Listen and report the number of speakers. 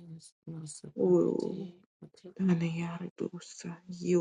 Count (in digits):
2